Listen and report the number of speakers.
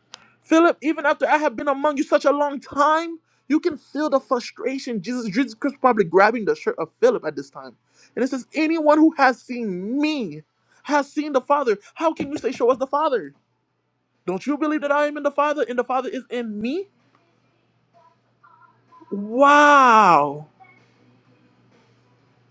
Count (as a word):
one